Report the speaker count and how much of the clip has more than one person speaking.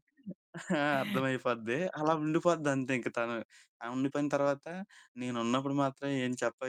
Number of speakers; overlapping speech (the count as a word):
one, no overlap